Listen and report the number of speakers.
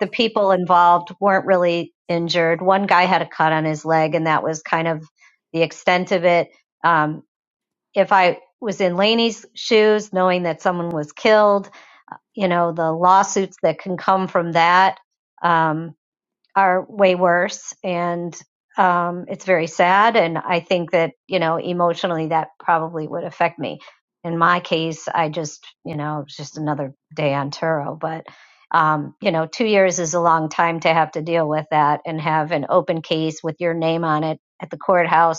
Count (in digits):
1